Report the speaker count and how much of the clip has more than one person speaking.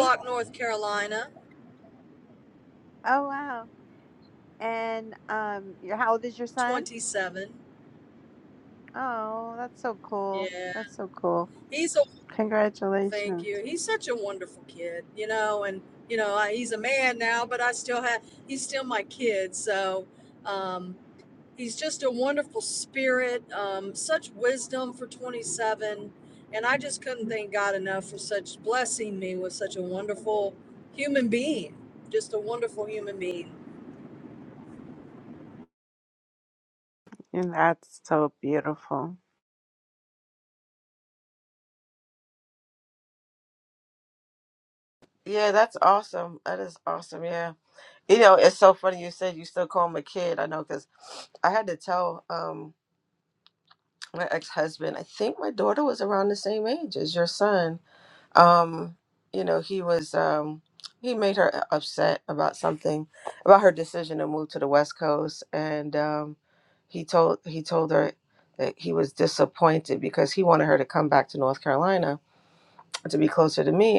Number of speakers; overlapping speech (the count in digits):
3, about 2%